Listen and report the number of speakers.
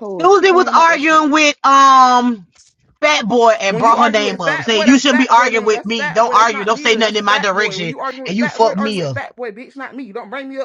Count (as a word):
two